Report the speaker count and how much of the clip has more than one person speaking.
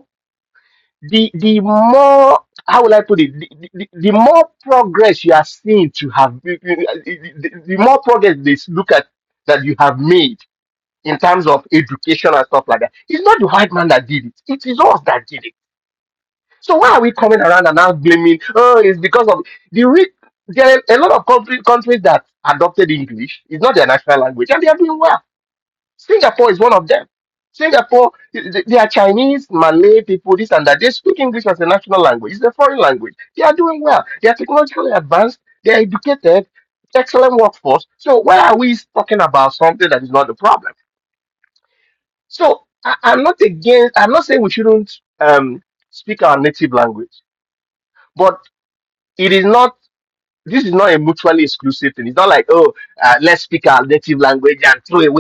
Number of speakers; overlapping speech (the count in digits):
1, no overlap